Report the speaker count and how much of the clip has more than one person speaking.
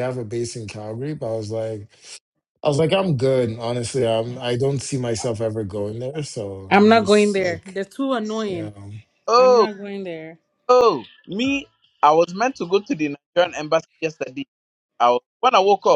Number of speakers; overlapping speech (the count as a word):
three, about 10%